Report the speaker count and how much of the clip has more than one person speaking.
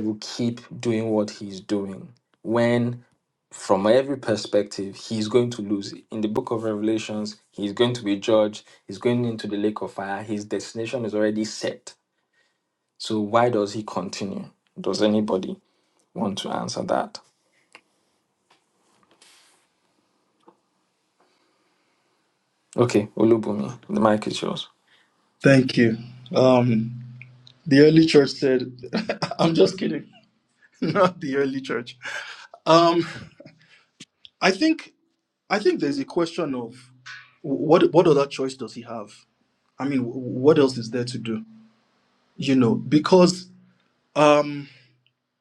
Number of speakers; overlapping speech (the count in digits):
2, no overlap